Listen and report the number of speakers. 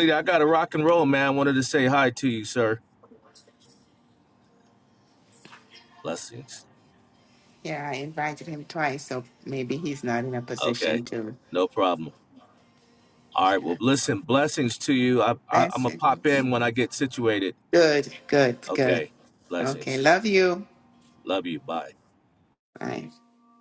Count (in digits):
2